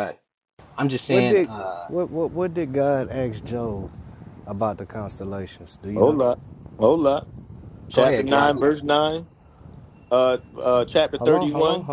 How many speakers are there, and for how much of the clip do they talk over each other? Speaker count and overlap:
3, about 16%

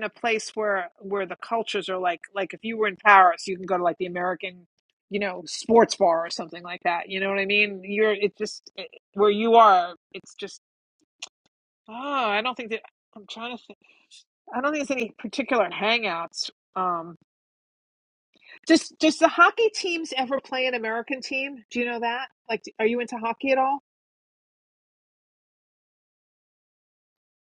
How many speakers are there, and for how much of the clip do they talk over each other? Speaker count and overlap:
1, no overlap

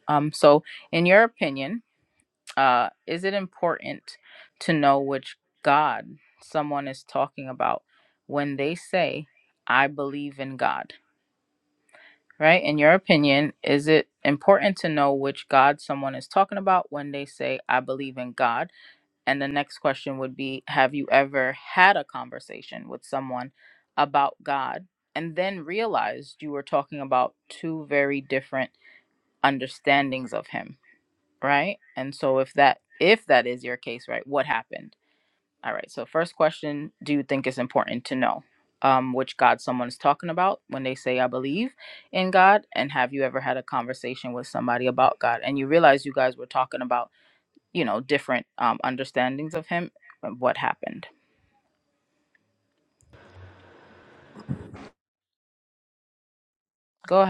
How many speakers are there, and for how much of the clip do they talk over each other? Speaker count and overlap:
1, no overlap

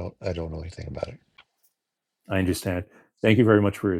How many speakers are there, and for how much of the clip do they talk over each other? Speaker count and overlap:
2, no overlap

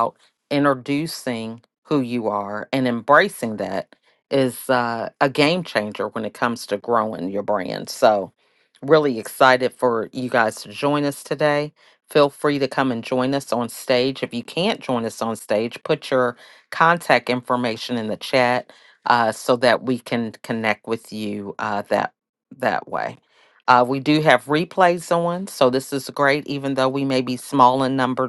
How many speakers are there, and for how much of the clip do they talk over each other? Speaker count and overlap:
1, no overlap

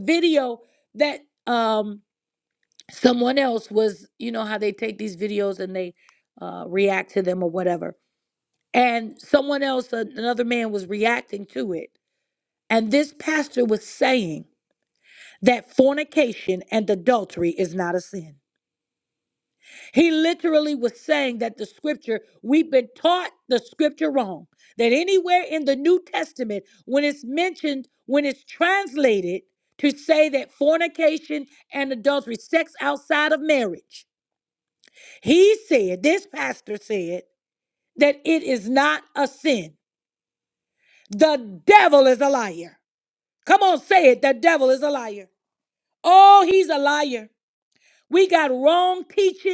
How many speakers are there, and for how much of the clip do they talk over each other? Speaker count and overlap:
1, no overlap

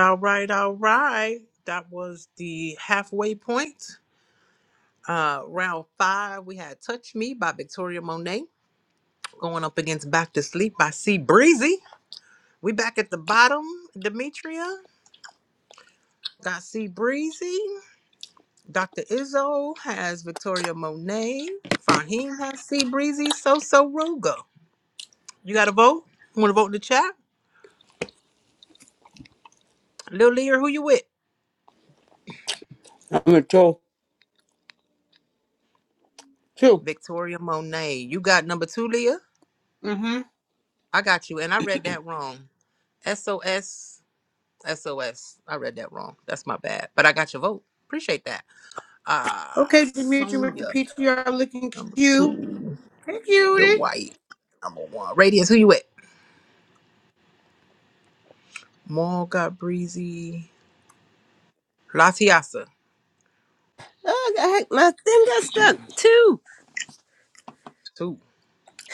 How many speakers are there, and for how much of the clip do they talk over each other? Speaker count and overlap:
3, about 2%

